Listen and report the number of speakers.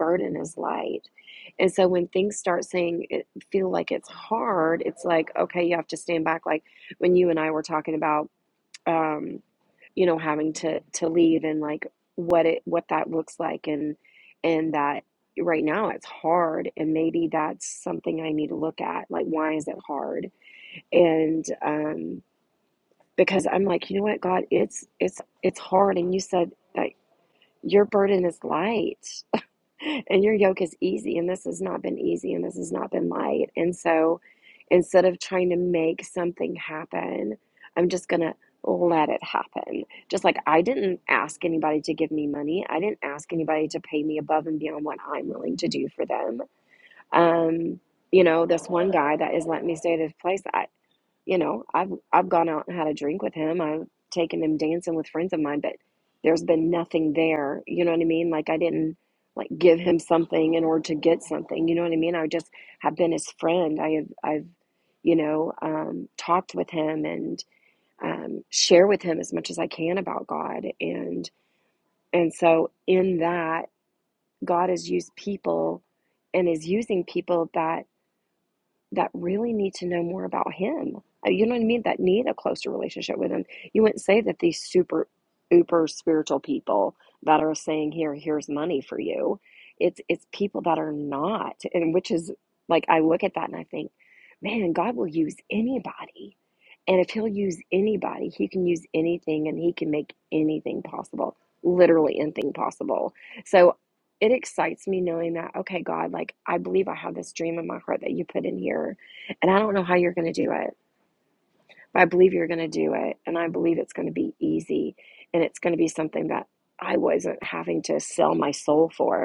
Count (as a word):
one